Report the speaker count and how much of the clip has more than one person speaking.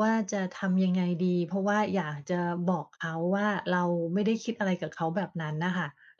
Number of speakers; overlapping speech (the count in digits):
1, no overlap